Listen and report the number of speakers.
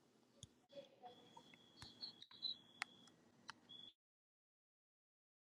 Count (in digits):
0